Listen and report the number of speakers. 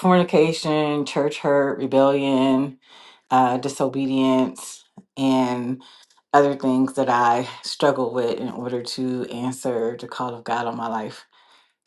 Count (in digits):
1